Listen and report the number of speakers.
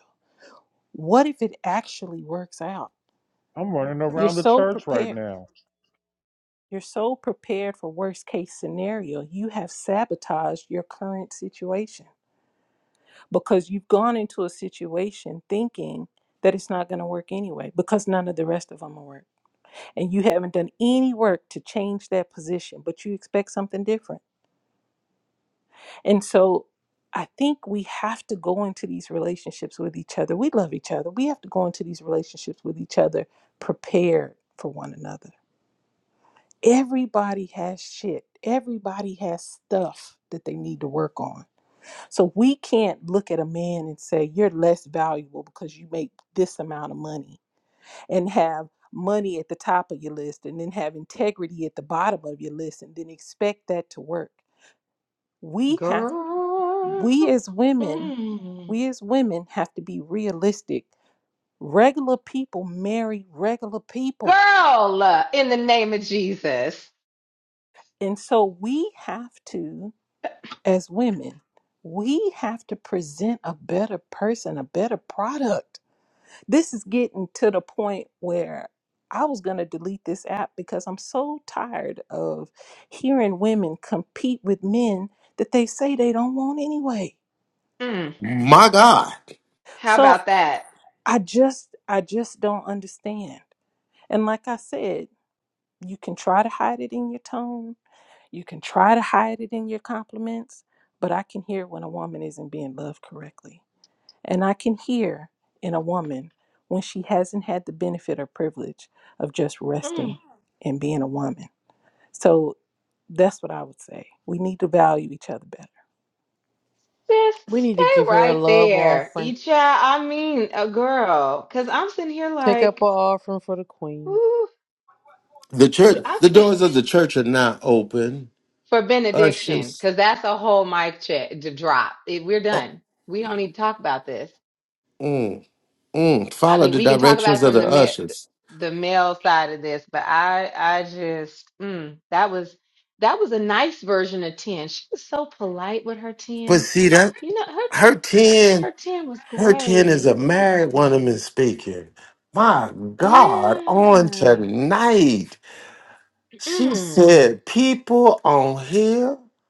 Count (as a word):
five